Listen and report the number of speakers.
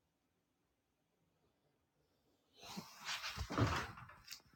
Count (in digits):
0